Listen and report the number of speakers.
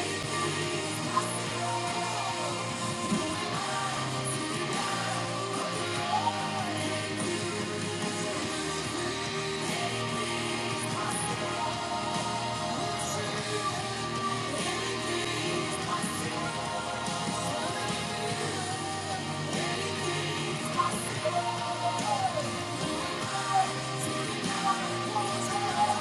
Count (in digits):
0